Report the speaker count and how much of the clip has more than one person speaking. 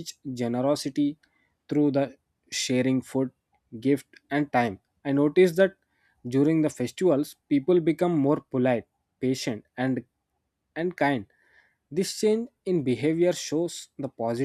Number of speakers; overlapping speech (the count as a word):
one, no overlap